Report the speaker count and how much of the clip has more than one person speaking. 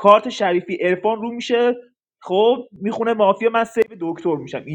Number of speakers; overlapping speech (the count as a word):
one, no overlap